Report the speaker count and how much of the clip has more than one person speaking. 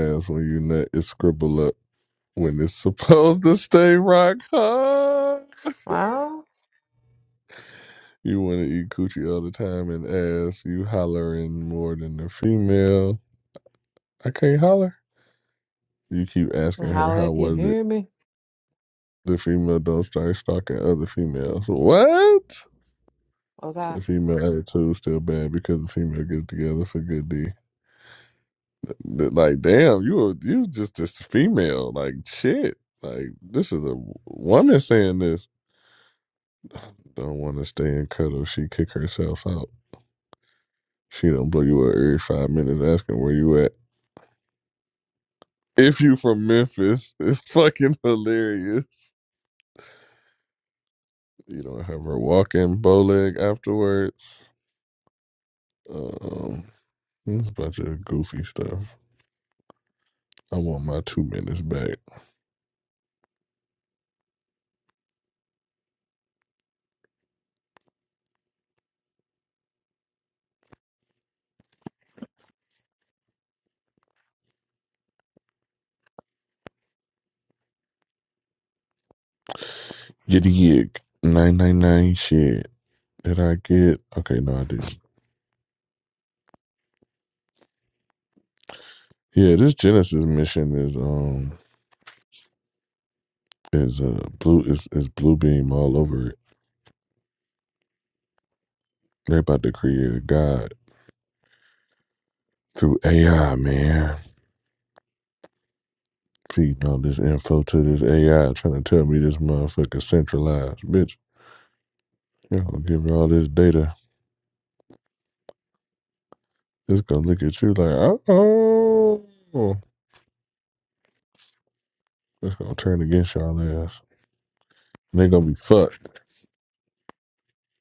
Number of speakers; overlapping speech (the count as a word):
two, about 1%